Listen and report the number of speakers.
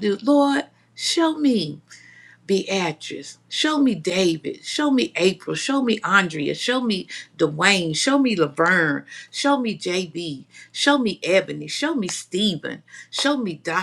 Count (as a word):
one